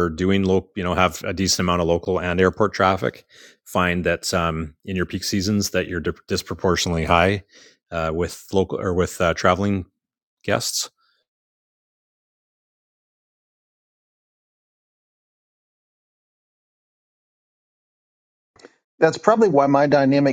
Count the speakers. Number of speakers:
2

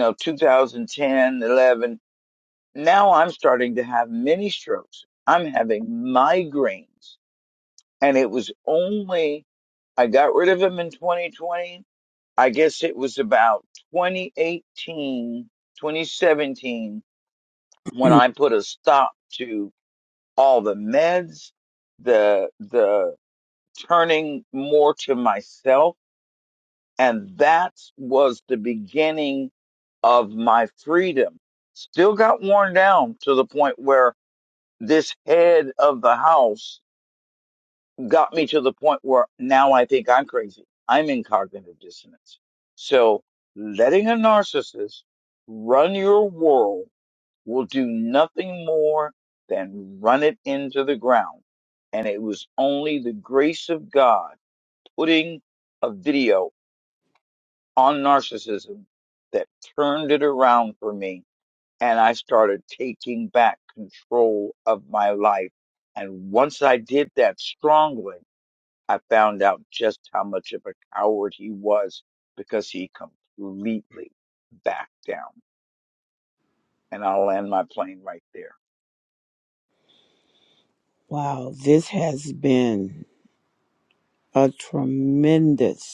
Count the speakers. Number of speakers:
2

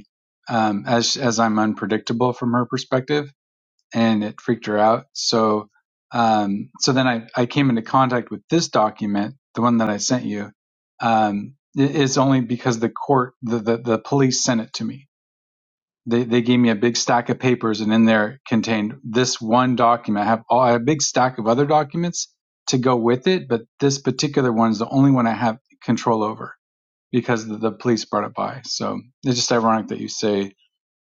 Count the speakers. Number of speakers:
1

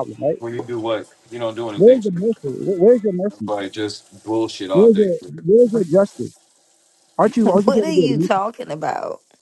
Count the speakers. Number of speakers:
3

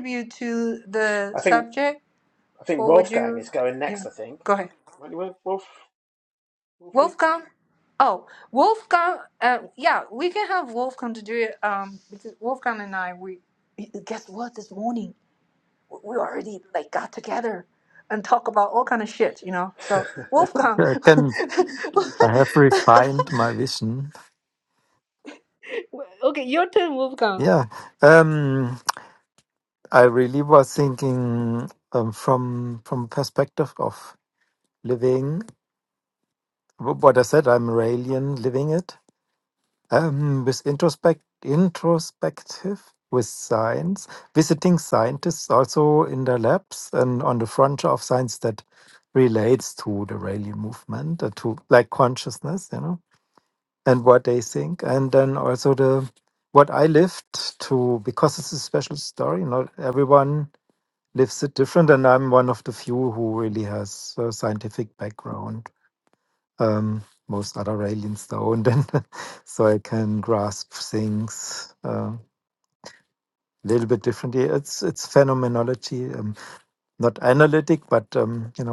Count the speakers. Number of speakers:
3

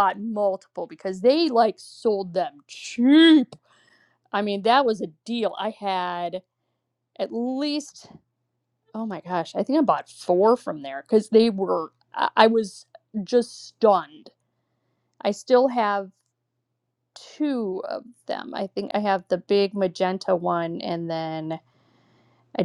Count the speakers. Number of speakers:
1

